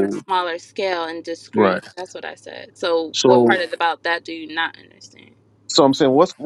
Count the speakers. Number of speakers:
2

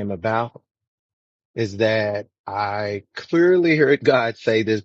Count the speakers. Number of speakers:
1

